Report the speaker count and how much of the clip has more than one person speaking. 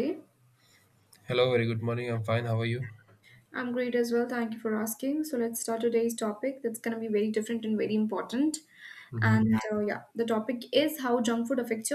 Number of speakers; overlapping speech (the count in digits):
2, about 2%